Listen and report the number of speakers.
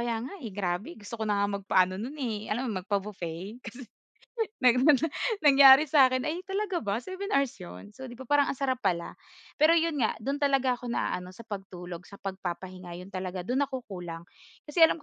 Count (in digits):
1